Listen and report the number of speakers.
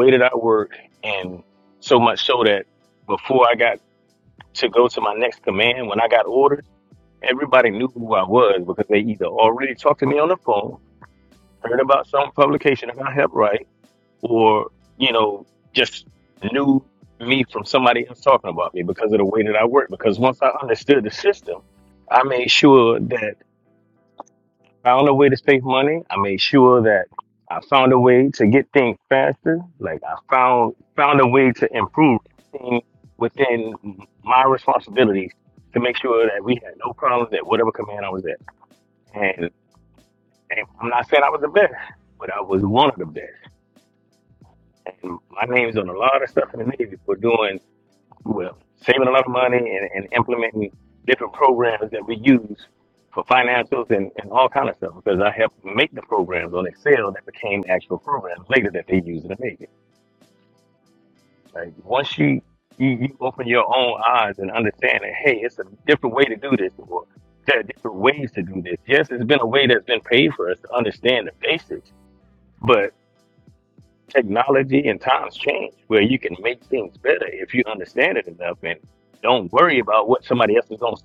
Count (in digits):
1